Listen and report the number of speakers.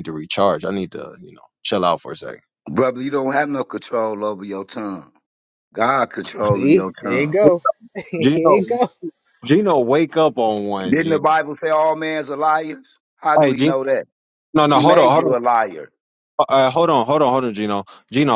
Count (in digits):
3